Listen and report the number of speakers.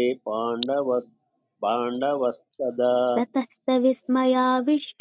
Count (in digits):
2